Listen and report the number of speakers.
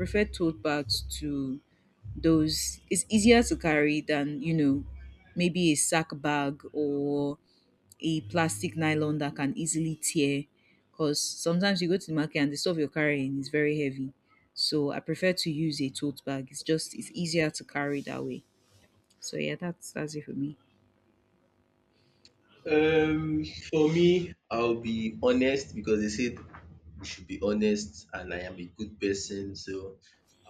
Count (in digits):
2